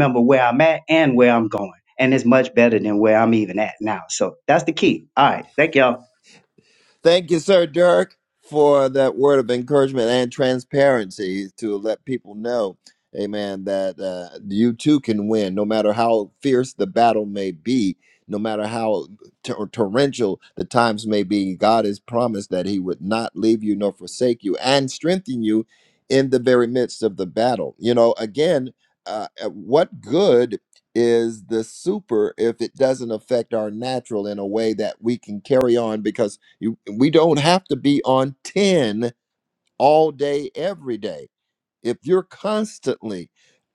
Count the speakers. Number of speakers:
two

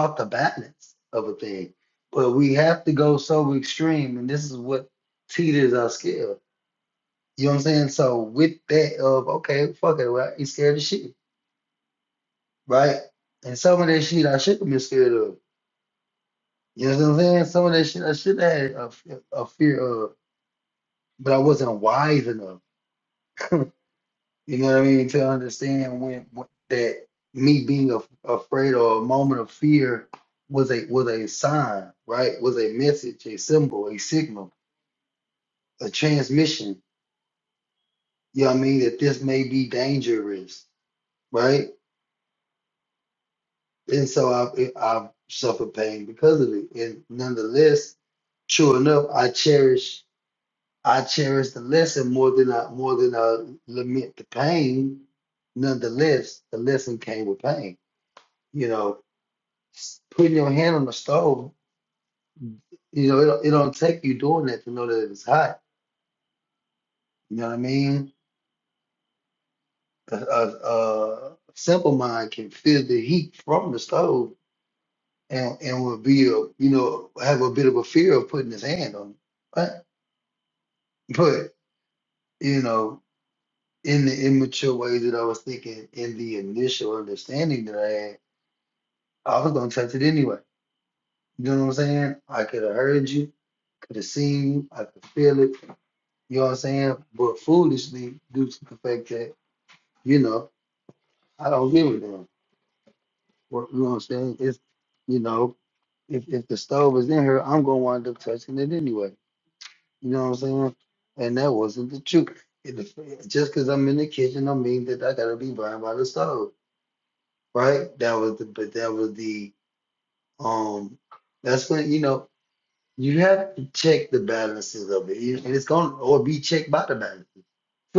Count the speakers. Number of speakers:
one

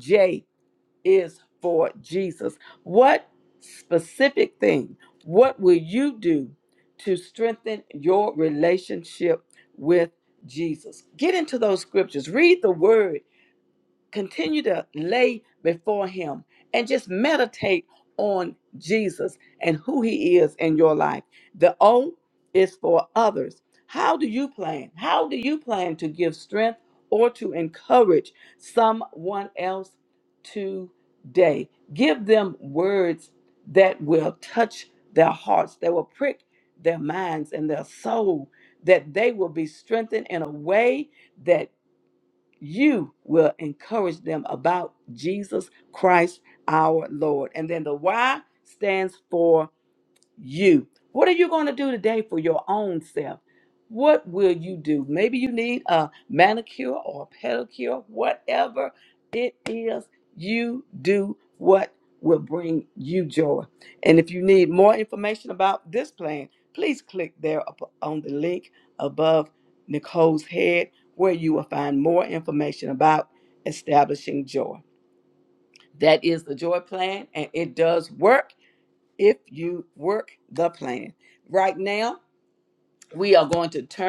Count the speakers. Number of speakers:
one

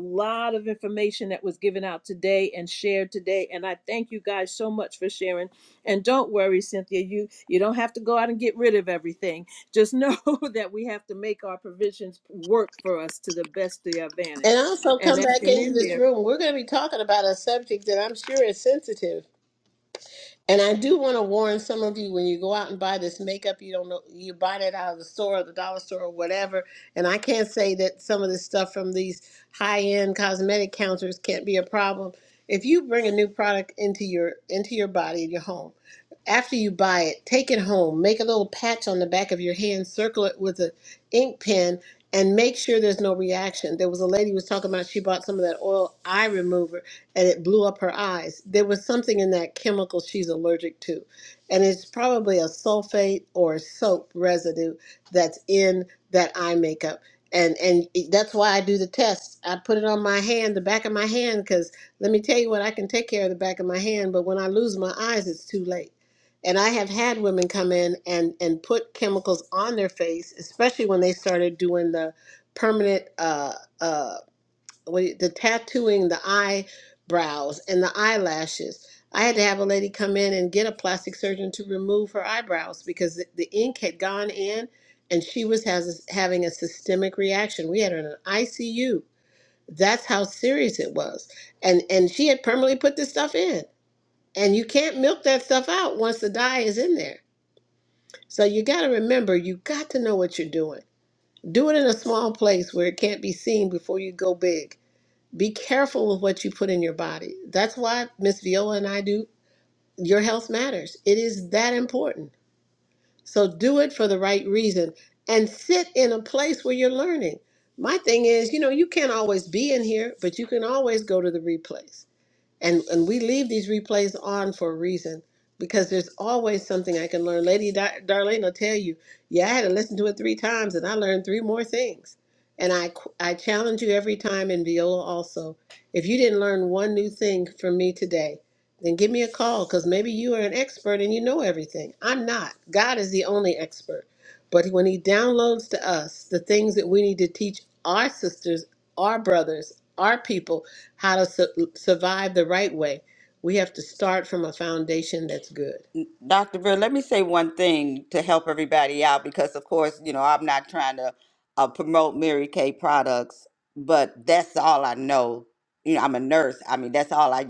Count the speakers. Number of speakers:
three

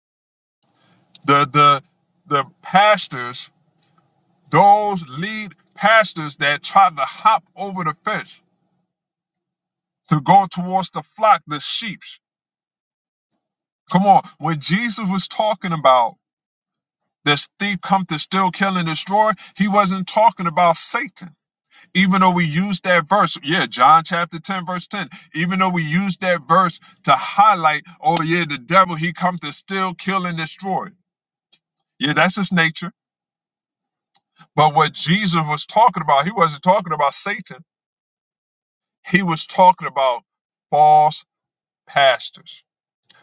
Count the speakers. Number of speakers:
one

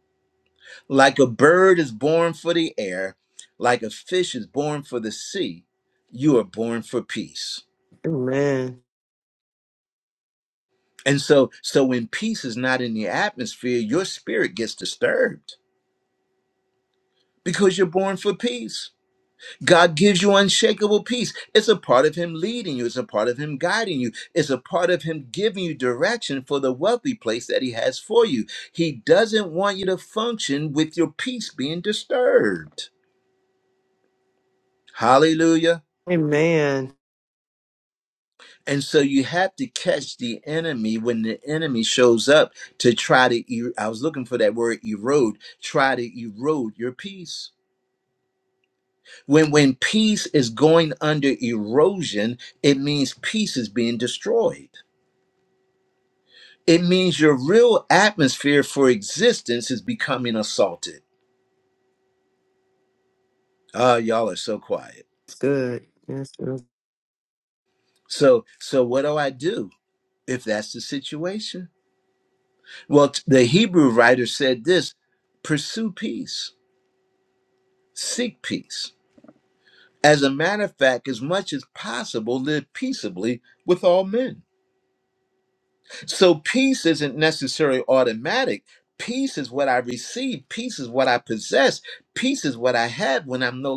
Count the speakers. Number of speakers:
two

